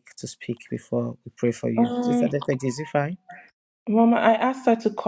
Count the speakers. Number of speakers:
2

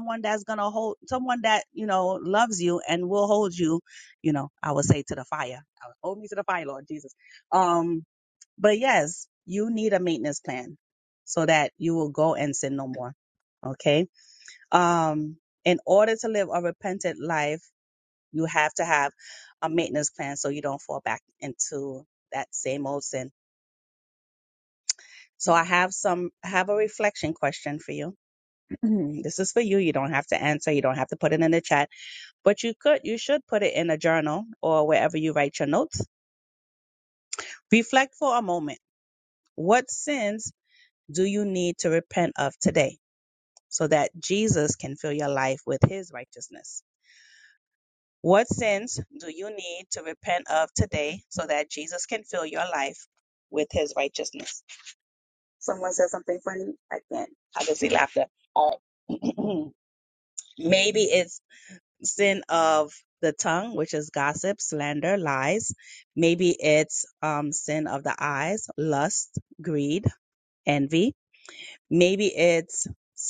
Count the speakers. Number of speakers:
1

